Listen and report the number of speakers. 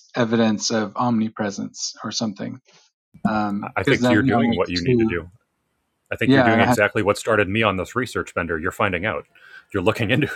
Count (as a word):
two